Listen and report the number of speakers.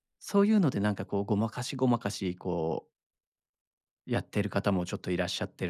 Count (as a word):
one